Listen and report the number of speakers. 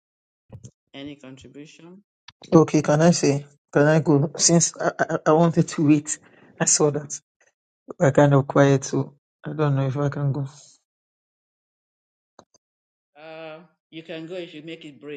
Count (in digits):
2